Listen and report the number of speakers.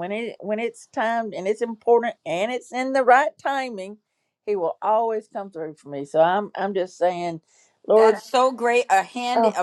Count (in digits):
2